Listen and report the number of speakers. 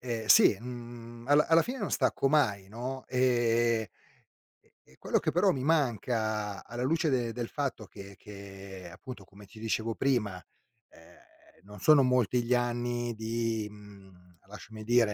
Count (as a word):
one